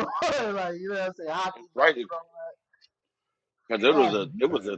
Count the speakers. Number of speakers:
two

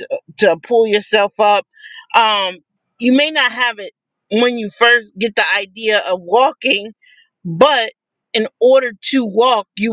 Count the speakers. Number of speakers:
one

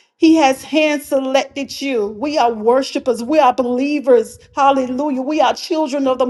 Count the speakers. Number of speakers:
one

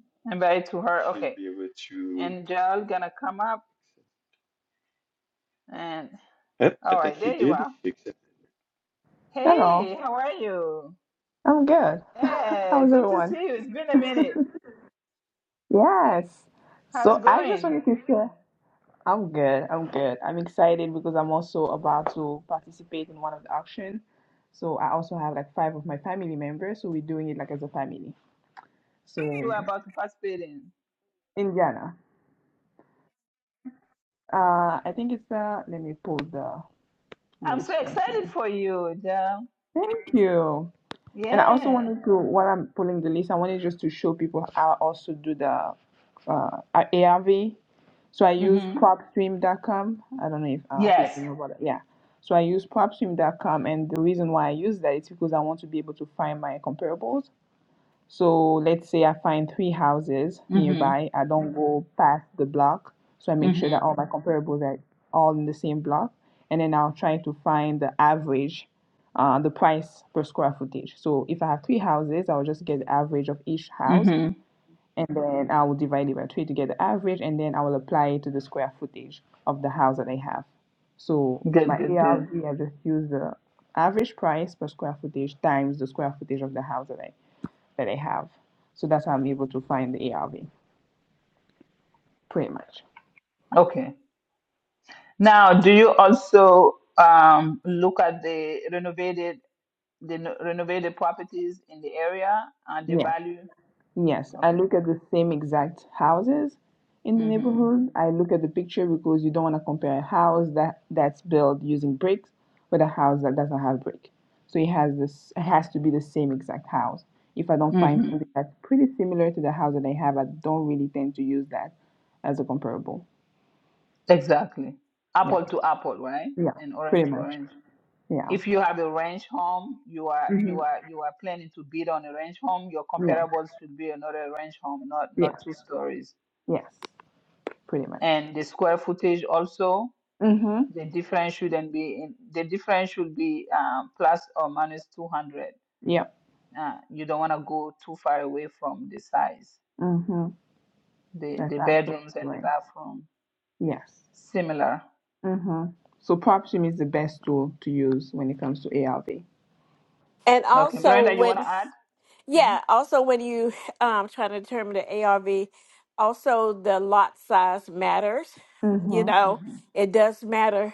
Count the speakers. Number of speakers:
four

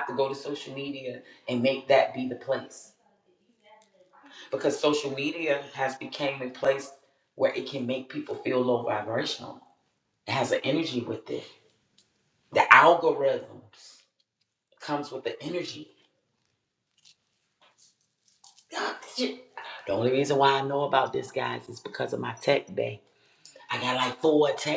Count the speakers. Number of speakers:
one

